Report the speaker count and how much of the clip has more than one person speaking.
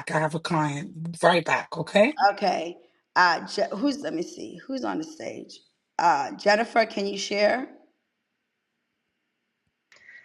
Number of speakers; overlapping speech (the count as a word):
two, no overlap